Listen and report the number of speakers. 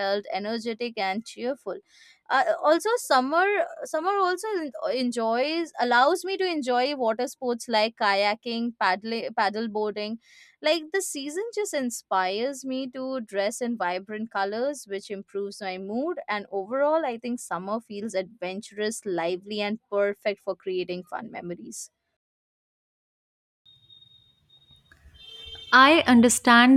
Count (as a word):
two